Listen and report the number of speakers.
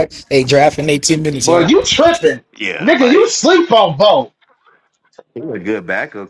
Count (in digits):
3